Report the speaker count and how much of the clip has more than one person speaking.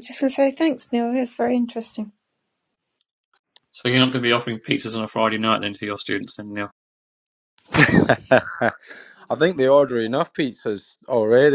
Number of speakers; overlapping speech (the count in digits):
3, no overlap